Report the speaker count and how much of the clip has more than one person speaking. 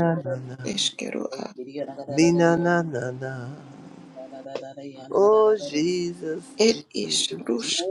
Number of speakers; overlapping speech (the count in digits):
3, about 42%